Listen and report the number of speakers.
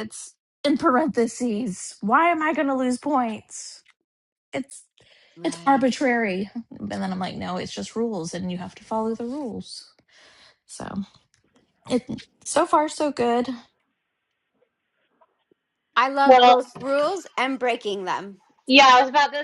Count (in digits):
3